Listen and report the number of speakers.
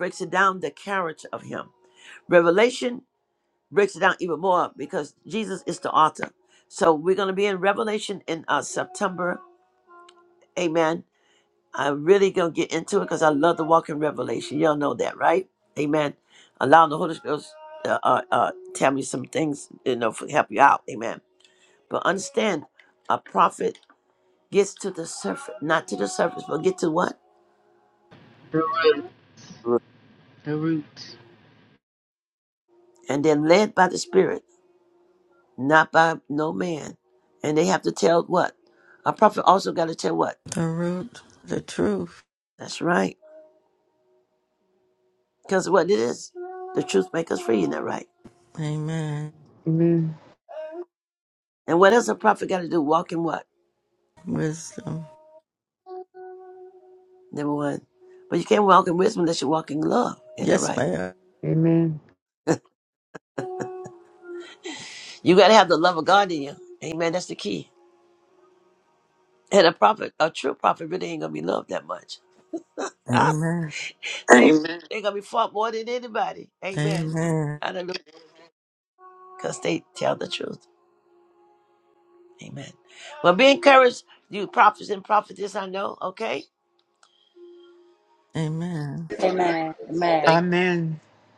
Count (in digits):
4